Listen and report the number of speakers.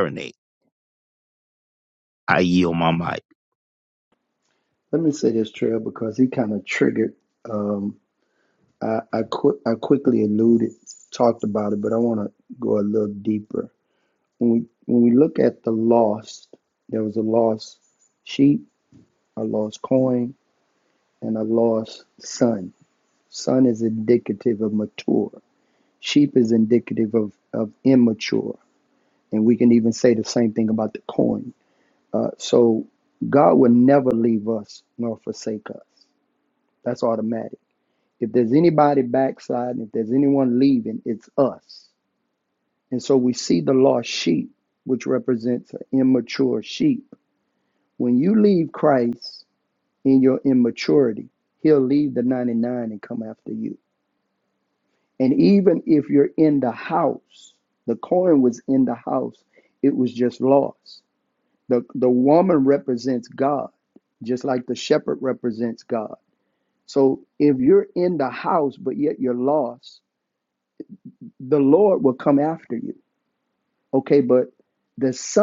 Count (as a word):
two